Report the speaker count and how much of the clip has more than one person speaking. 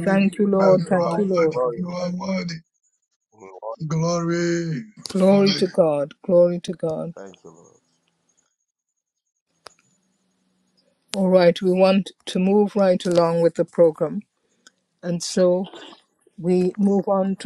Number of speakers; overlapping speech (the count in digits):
3, about 13%